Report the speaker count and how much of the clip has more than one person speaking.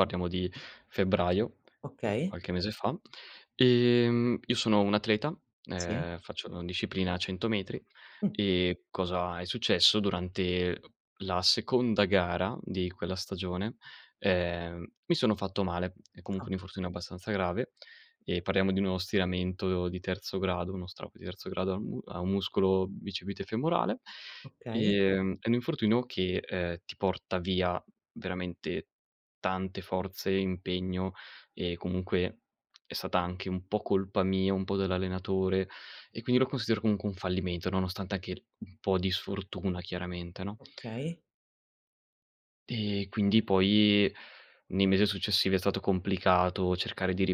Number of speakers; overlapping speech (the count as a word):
two, about 2%